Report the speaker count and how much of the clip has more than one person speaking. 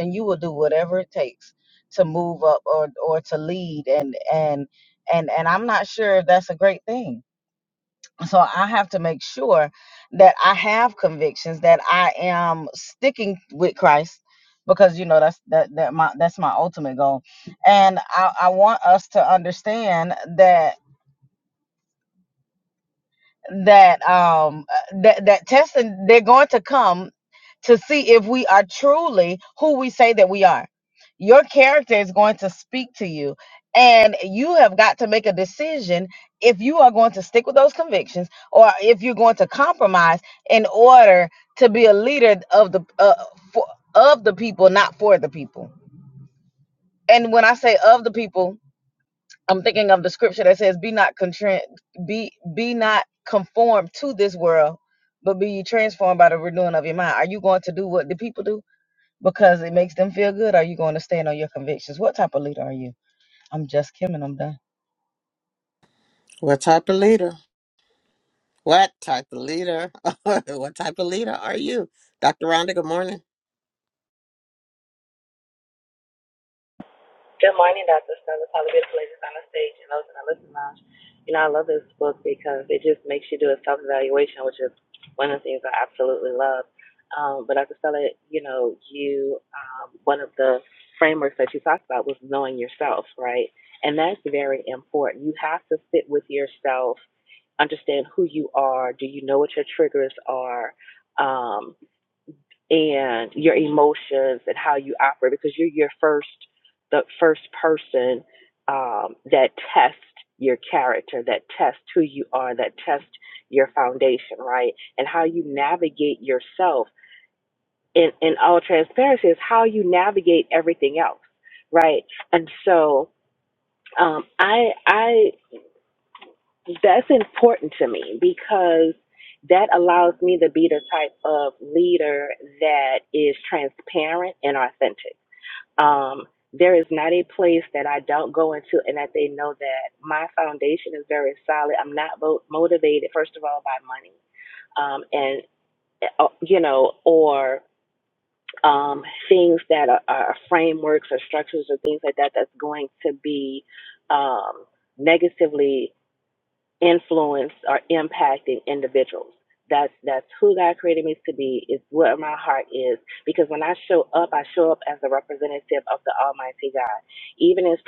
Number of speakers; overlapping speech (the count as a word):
three, no overlap